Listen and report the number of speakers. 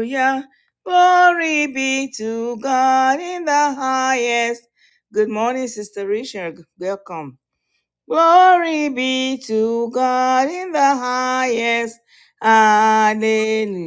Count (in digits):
1